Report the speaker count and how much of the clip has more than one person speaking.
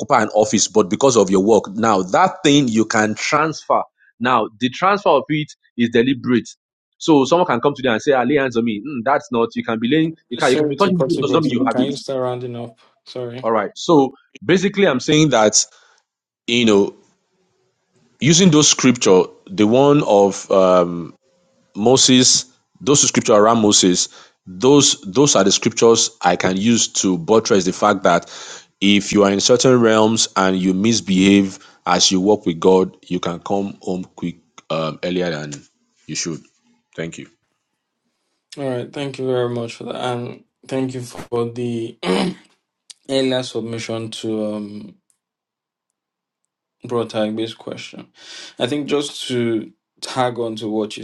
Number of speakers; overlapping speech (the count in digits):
2, about 3%